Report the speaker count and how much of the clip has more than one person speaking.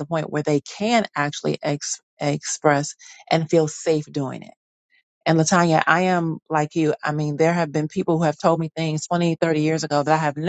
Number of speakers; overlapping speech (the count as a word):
one, no overlap